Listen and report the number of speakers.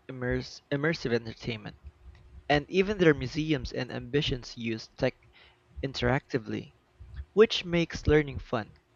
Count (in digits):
1